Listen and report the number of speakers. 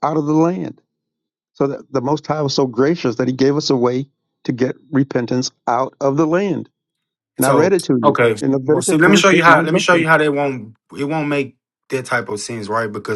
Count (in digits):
2